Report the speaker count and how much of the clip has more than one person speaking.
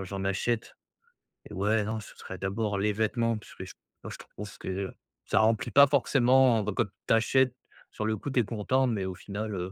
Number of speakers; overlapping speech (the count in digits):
1, no overlap